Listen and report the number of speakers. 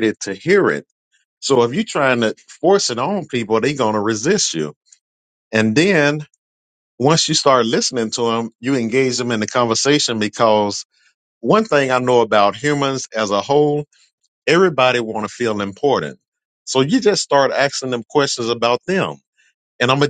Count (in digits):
1